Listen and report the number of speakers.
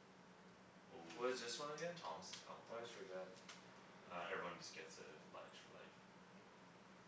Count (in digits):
2